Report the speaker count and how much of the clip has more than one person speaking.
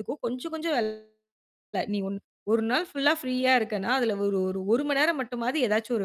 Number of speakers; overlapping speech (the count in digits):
1, no overlap